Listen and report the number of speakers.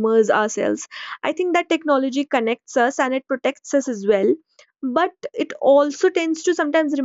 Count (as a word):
one